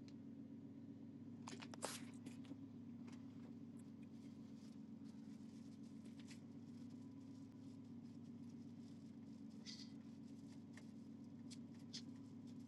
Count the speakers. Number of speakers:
0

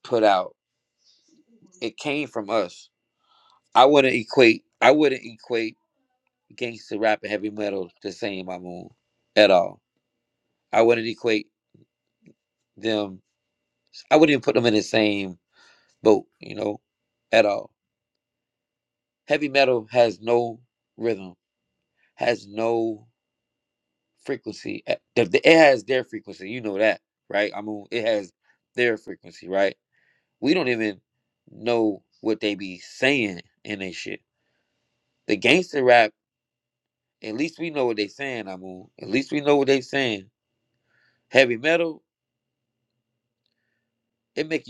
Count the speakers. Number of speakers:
1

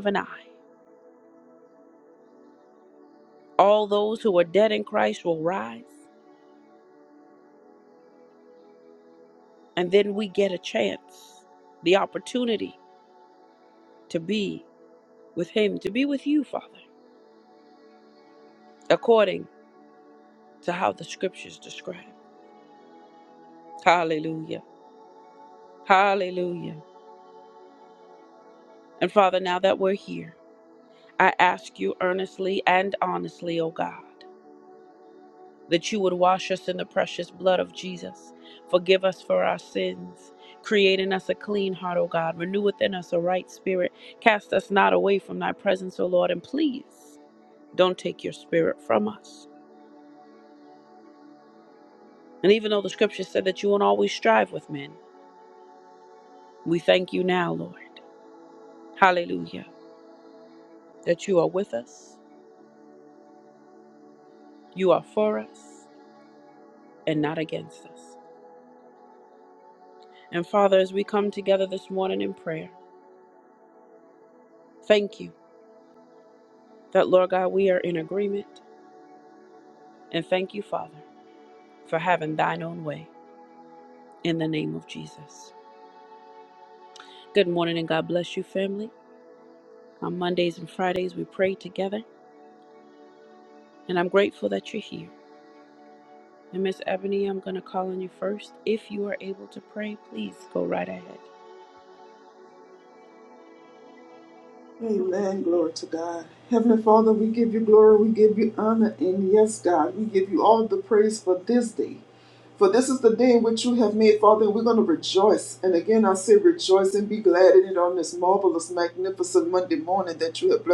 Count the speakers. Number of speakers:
2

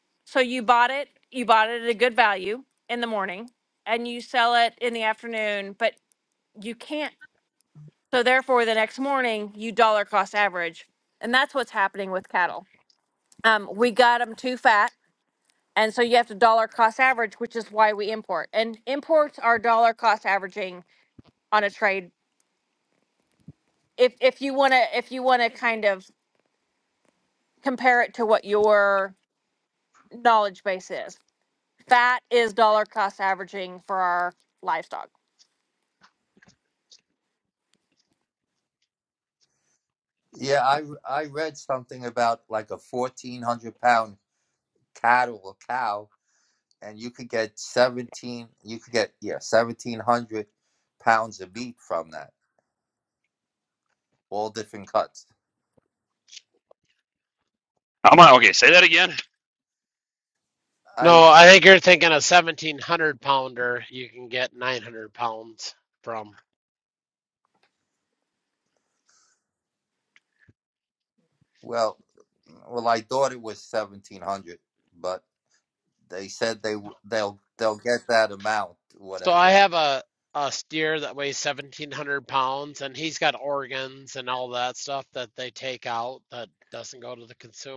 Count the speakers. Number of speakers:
4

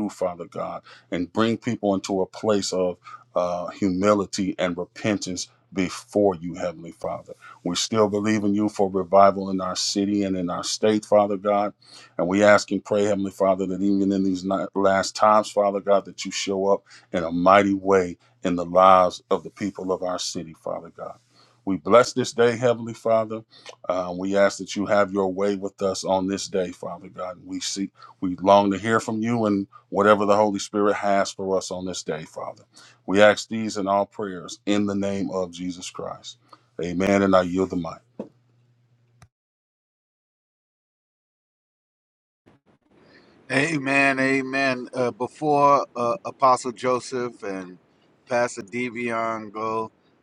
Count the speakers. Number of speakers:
2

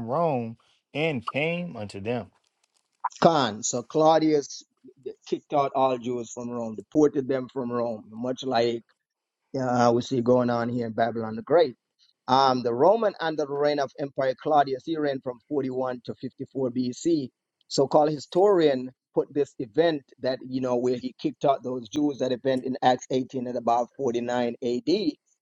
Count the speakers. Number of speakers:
2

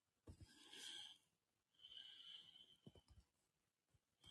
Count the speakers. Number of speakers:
0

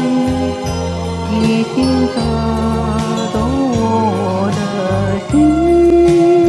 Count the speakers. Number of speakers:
1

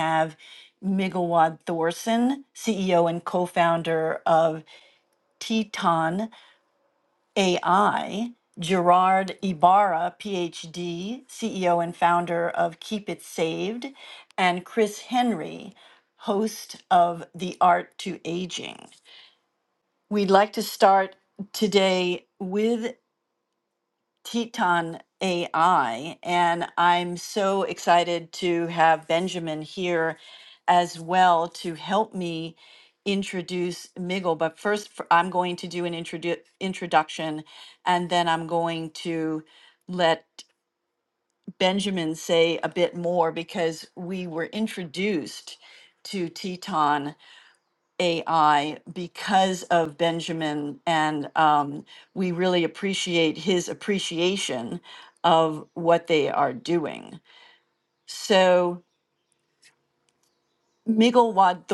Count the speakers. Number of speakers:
1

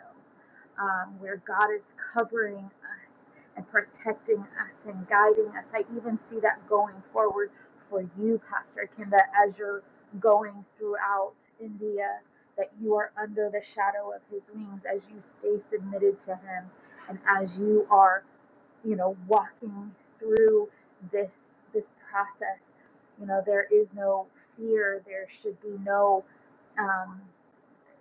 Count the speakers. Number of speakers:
1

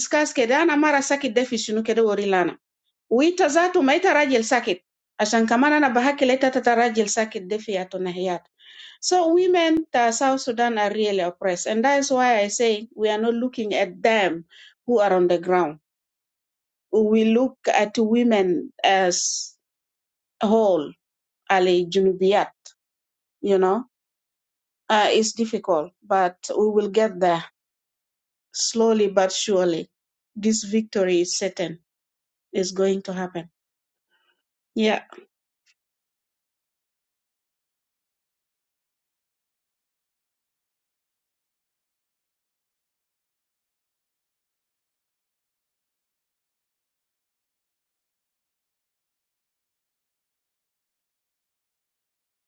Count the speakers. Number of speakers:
1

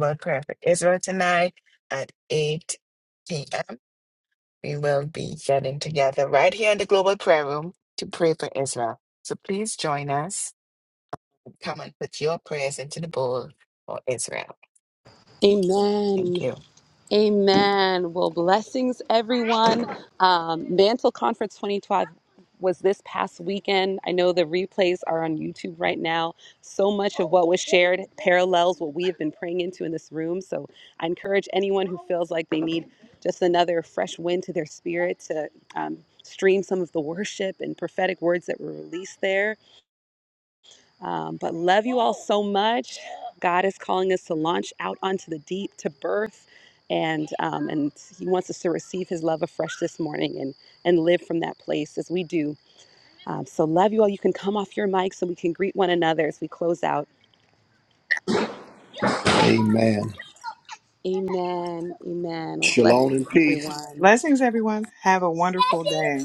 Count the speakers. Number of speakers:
4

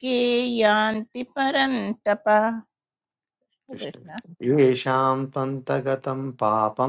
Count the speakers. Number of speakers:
2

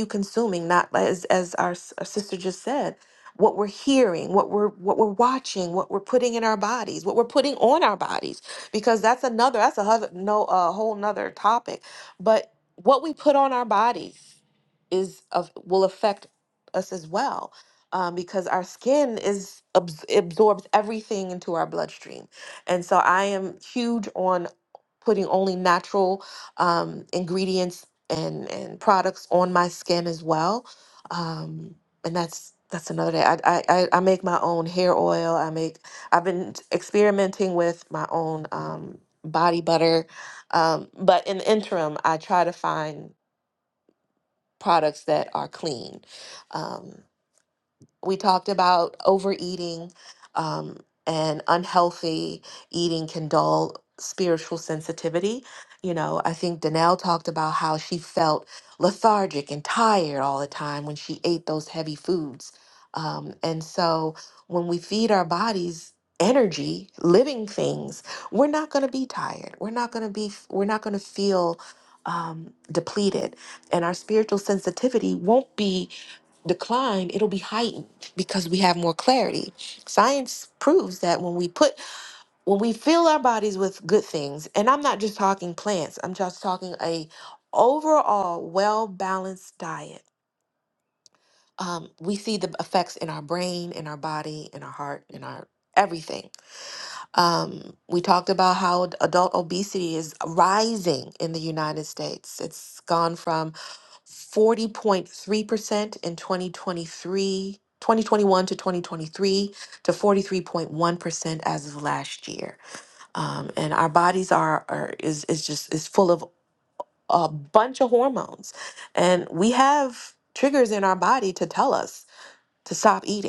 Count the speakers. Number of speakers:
1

